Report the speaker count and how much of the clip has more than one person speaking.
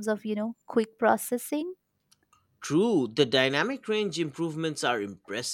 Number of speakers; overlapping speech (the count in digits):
2, no overlap